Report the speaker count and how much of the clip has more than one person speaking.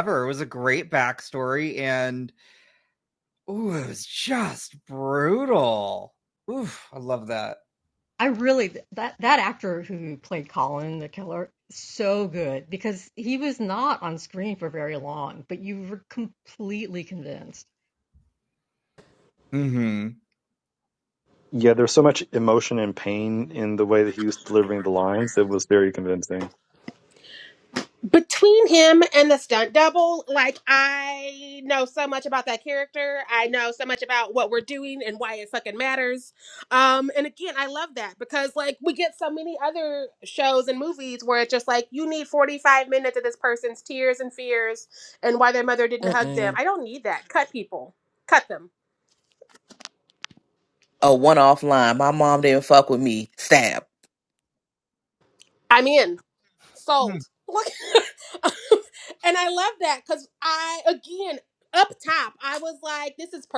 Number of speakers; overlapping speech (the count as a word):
five, about 1%